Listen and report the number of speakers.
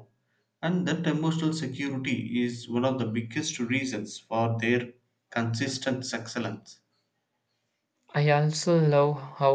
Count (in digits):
2